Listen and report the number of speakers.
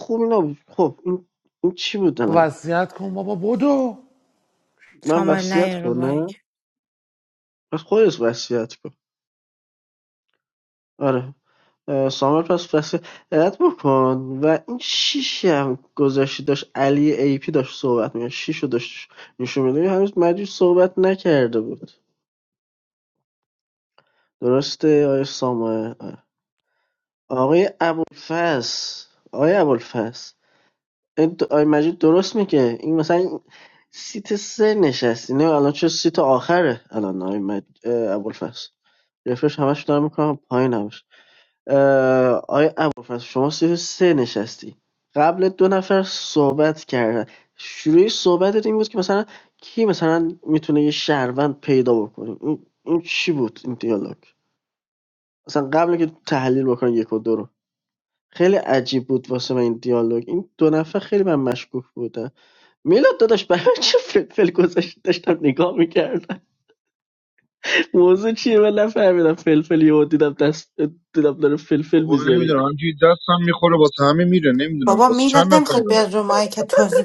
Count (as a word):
four